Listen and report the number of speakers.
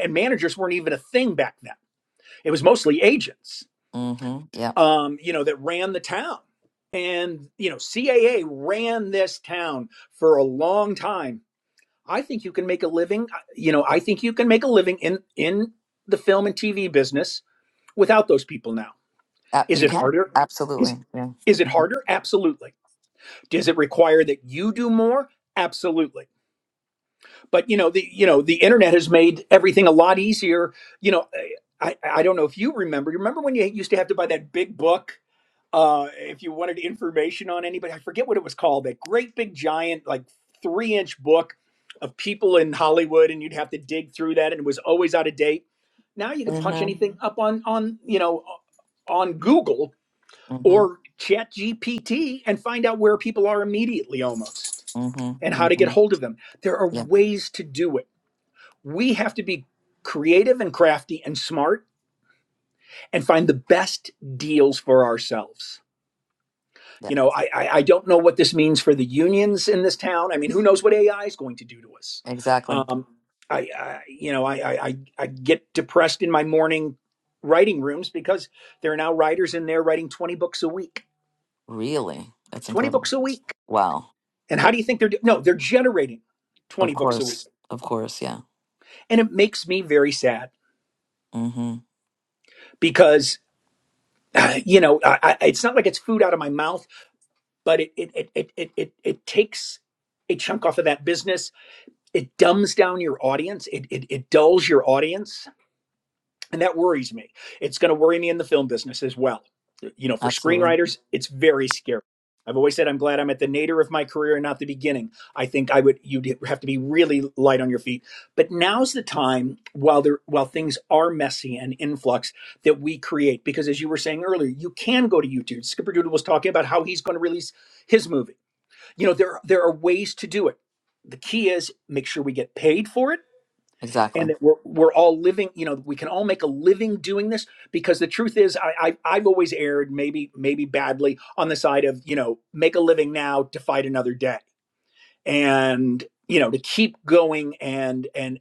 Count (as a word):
two